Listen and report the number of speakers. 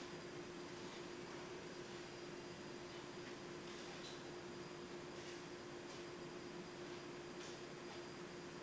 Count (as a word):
zero